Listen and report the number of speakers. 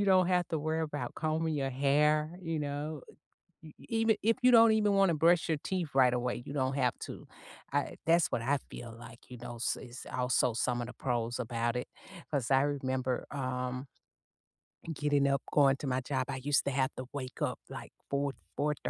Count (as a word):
one